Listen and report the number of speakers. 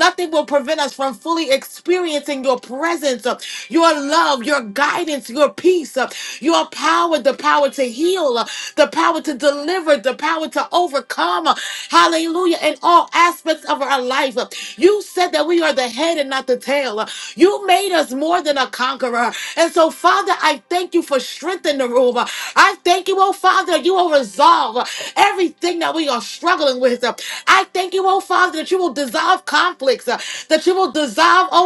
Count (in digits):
1